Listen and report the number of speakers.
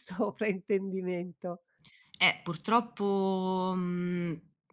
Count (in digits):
2